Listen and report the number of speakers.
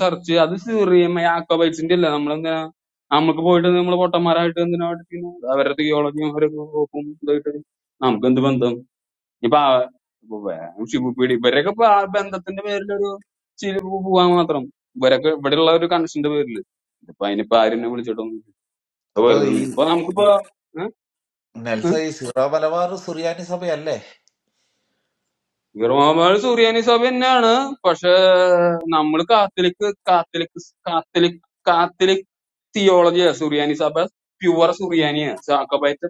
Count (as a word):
two